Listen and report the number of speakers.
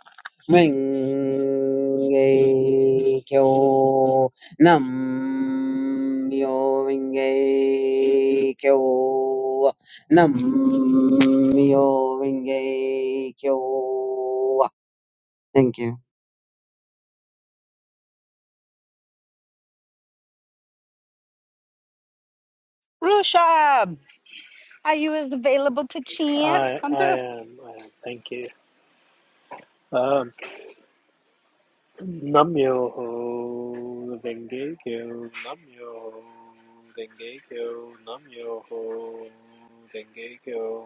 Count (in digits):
3